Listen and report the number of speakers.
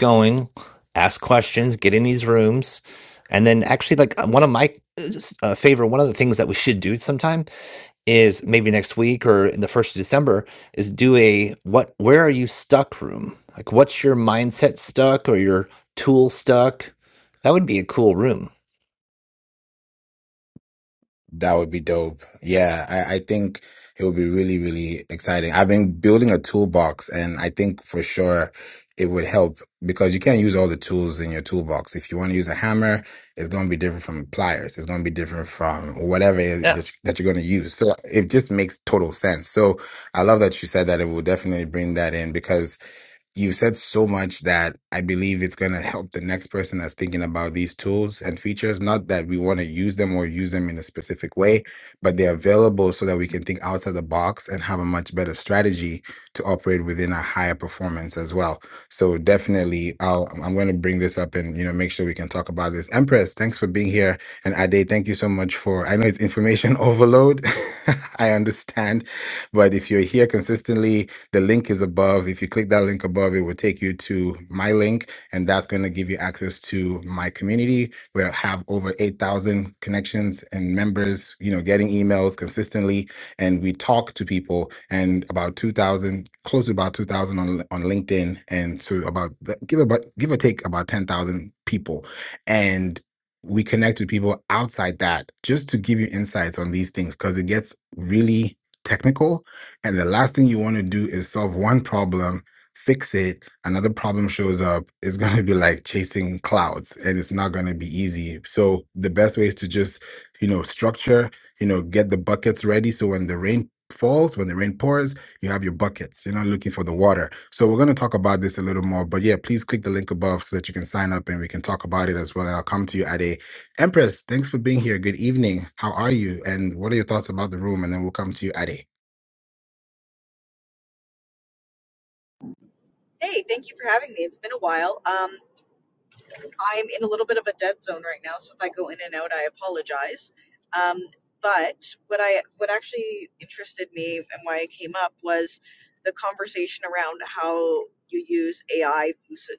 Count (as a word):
three